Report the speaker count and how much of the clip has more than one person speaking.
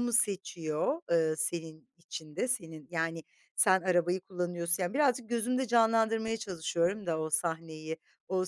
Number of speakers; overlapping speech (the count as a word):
one, no overlap